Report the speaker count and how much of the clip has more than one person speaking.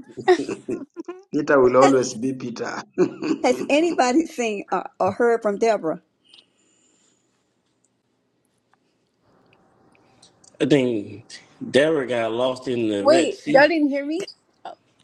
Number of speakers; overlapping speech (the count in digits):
4, about 4%